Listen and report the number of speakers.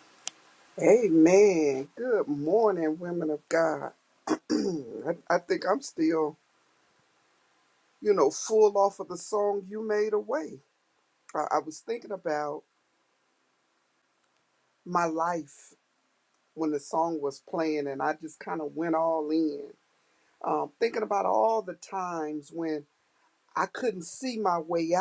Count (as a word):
one